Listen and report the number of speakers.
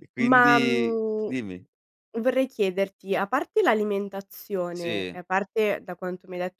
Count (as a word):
two